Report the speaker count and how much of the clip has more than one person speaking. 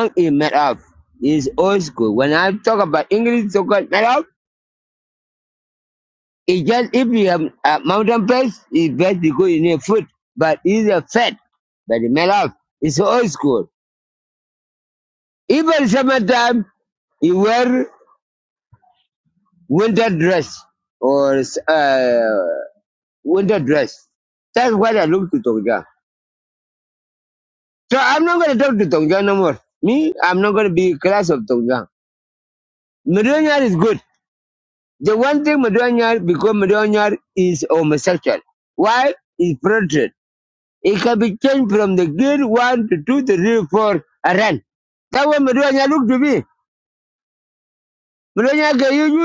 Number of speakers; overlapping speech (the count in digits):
1, no overlap